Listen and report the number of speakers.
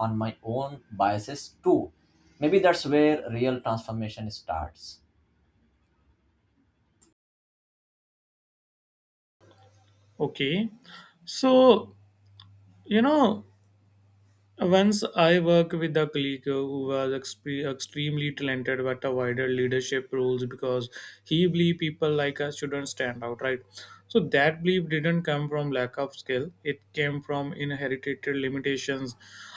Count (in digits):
2